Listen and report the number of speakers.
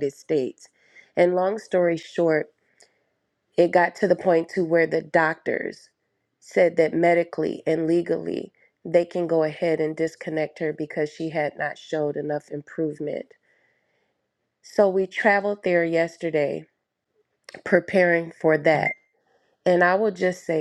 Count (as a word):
one